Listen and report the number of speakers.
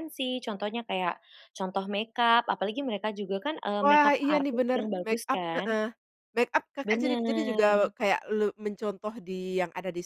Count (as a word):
two